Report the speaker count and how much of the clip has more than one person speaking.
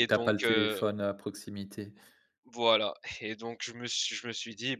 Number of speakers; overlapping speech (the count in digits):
2, about 18%